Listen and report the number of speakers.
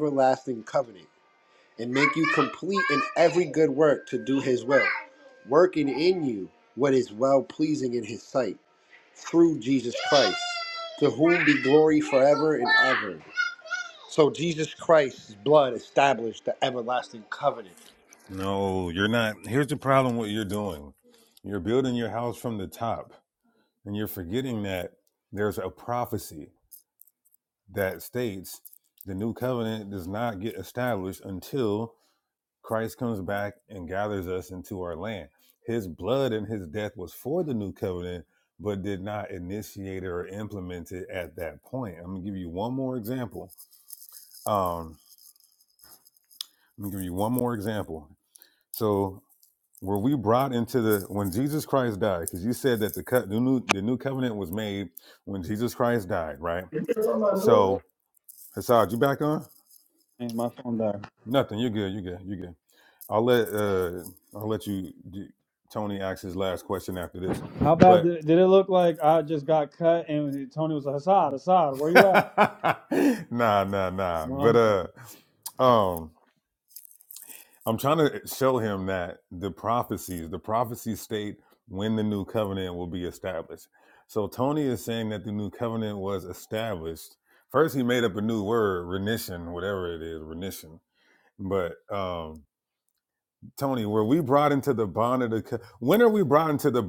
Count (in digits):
3